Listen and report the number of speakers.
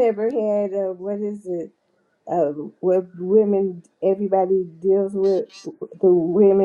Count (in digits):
1